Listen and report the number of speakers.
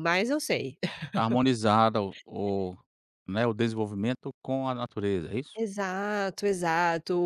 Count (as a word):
two